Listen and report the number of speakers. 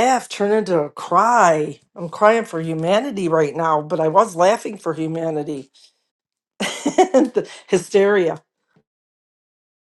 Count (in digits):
1